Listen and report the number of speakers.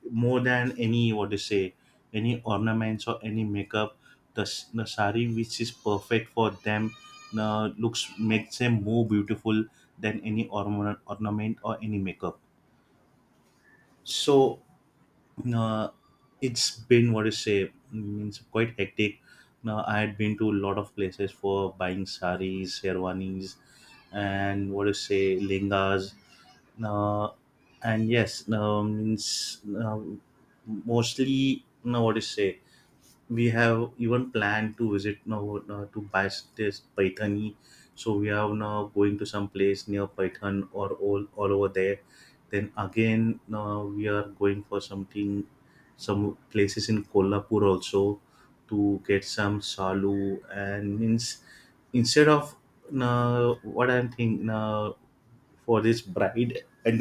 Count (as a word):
one